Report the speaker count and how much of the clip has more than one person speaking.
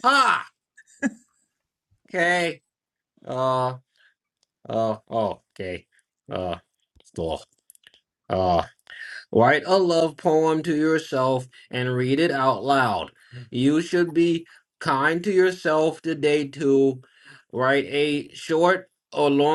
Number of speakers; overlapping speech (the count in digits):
1, no overlap